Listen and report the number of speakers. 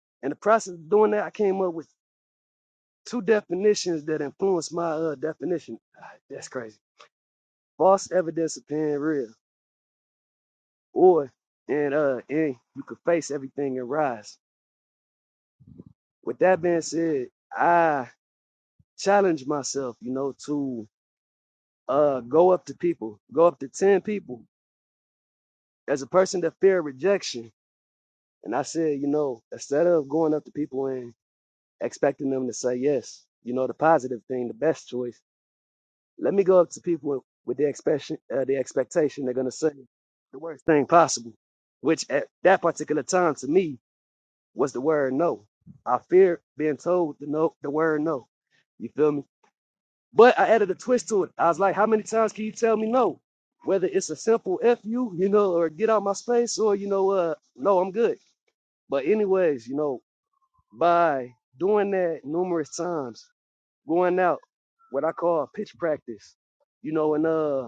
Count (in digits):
1